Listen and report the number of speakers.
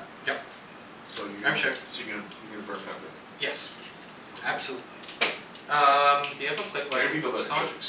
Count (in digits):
2